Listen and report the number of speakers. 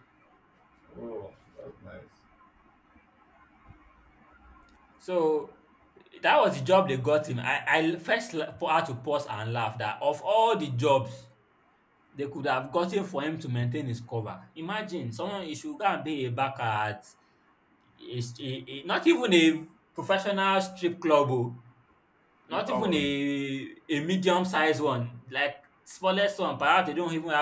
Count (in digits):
2